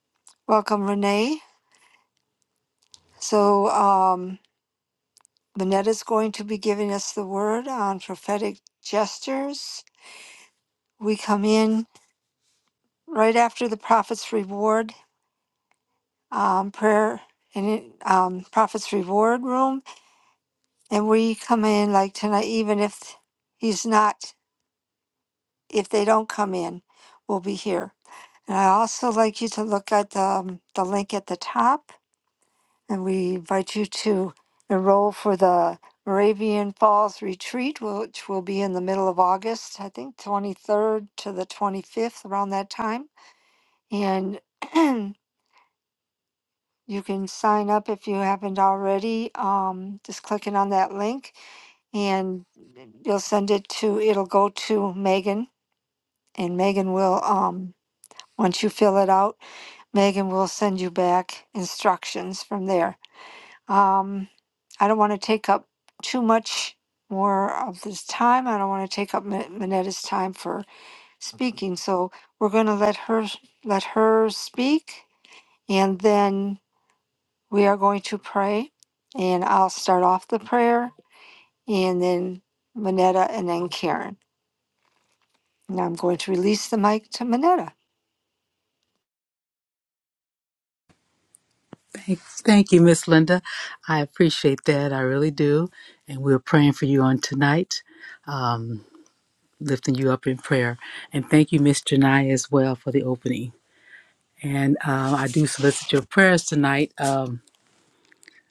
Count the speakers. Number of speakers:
two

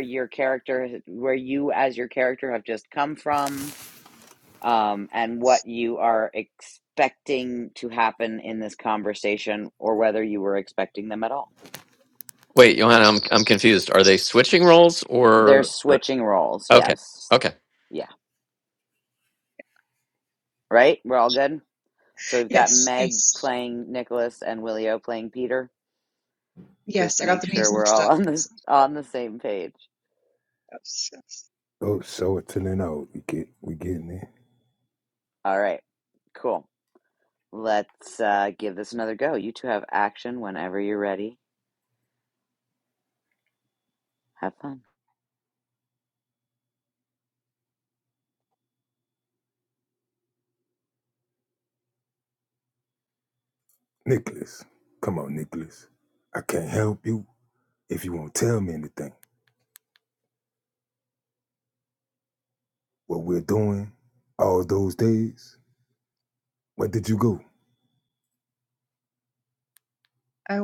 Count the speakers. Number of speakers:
four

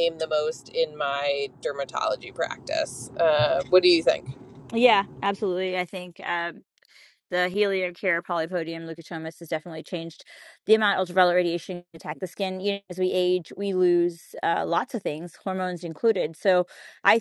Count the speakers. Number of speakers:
two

